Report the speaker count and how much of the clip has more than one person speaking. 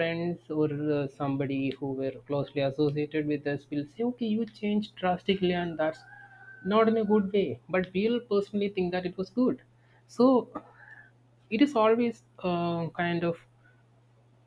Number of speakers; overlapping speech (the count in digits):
1, no overlap